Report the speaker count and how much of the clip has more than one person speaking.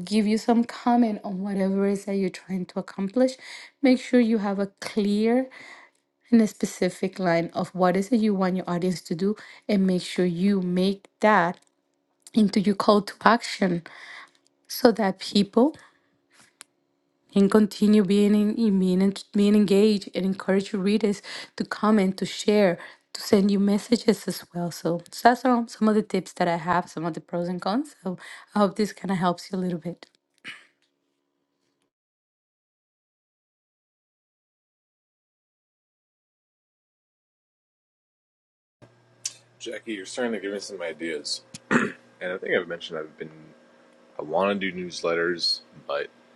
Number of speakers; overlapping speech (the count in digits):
2, no overlap